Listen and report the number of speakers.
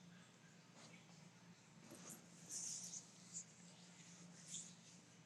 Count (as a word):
zero